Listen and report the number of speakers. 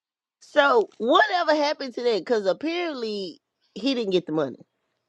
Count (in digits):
1